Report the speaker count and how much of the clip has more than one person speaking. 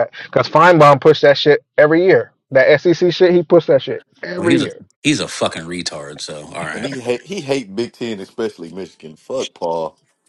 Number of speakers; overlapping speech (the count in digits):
3, about 4%